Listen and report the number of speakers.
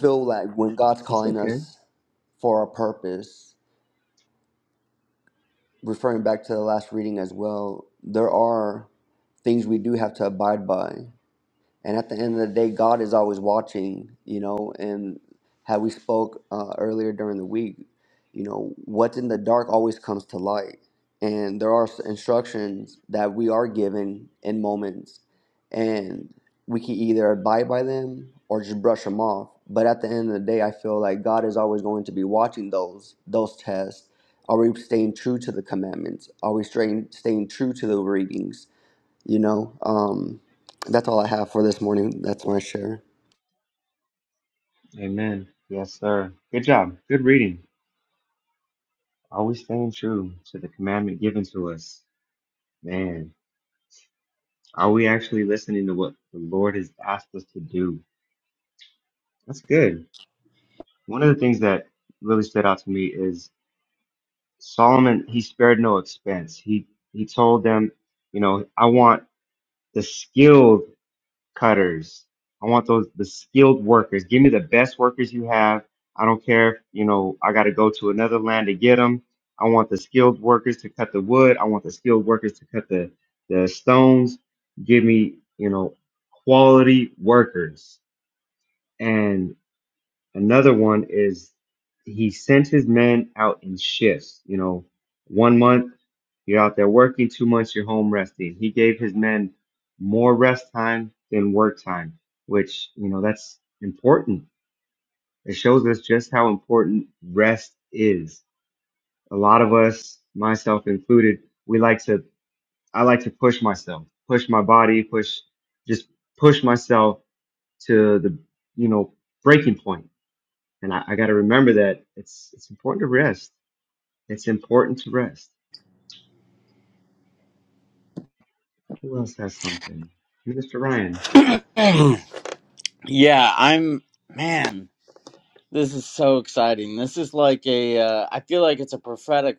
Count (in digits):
3